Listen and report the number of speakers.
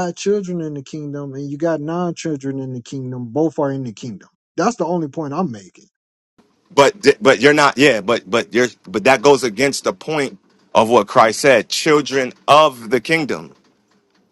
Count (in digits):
2